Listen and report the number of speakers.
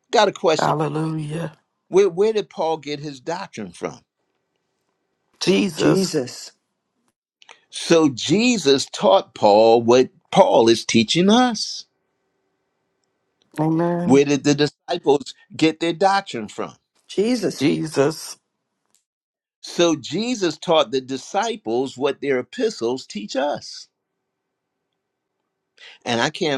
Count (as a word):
three